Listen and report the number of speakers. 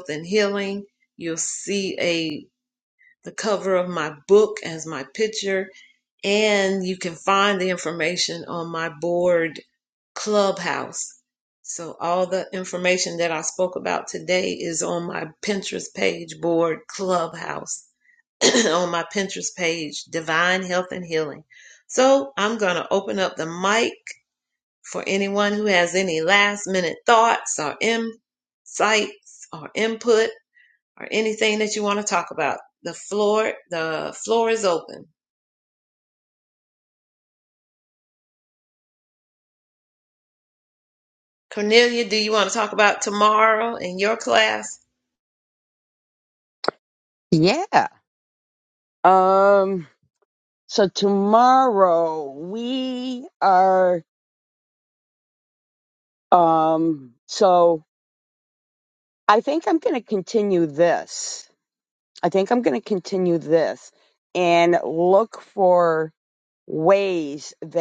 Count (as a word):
two